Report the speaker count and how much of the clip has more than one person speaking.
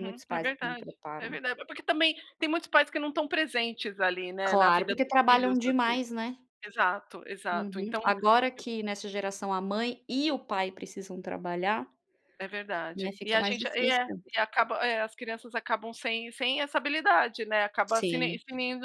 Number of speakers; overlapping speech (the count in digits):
2, about 26%